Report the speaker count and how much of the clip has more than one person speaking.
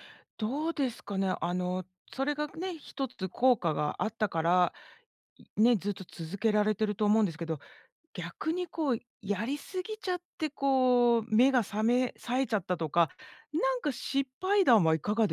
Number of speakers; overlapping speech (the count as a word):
one, no overlap